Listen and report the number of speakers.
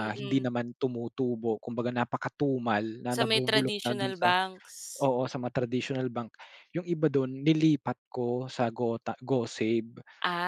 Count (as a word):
two